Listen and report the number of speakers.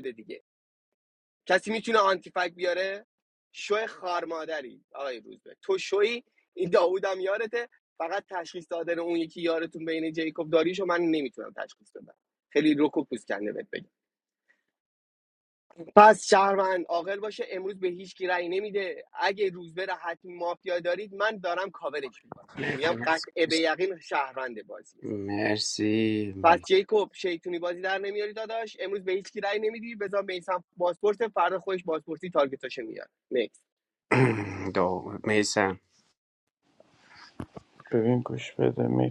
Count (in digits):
3